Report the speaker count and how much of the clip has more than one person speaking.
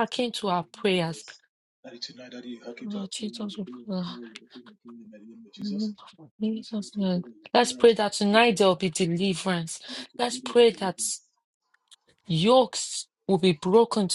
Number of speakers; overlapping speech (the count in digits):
2, about 21%